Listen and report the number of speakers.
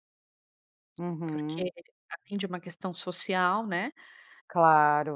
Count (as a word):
two